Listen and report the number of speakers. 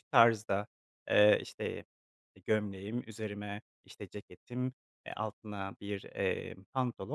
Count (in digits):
1